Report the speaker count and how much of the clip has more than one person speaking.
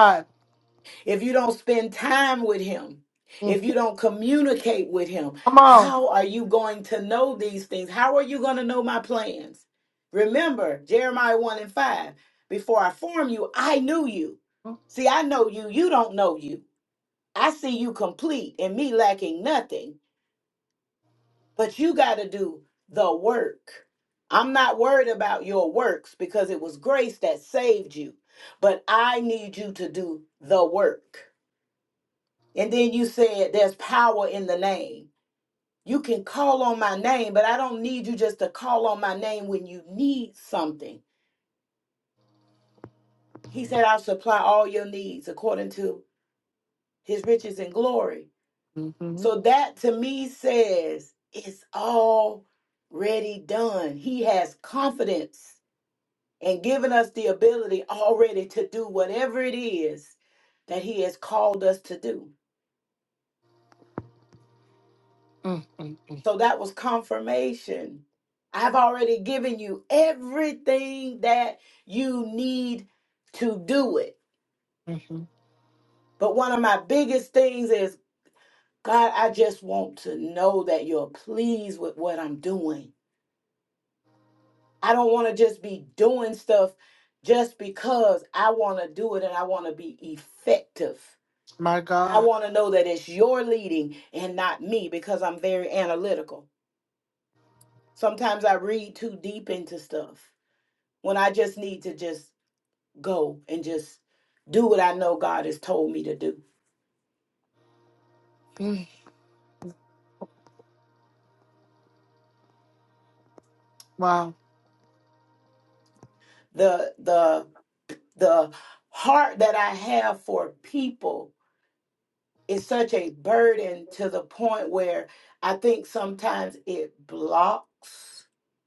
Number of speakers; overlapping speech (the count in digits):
2, about 1%